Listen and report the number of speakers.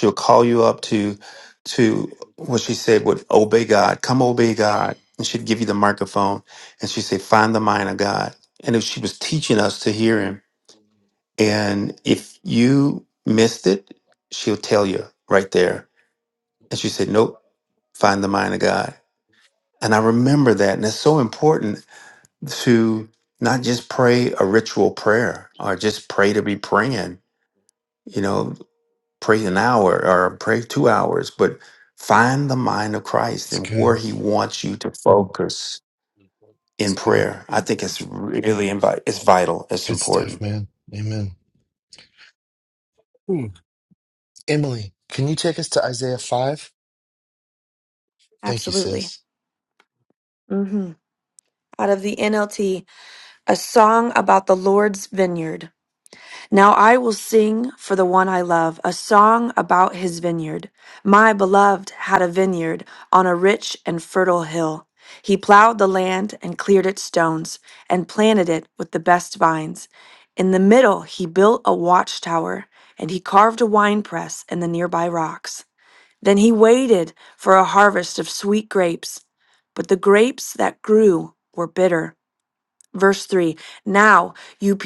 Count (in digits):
3